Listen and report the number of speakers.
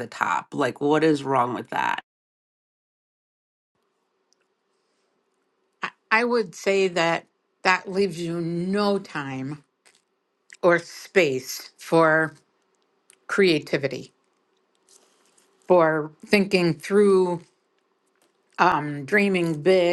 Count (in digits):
2